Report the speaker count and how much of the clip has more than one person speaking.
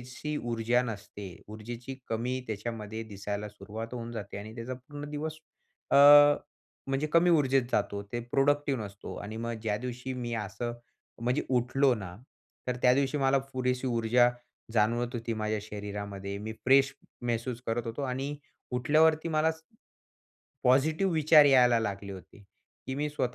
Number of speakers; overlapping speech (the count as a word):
one, no overlap